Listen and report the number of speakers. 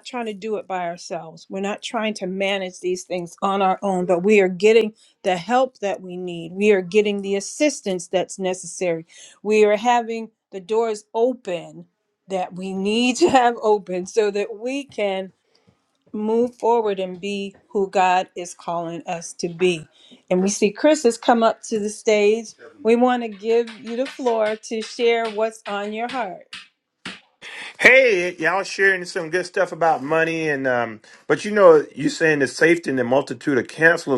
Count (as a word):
two